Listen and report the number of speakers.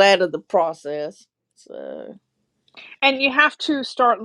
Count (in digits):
2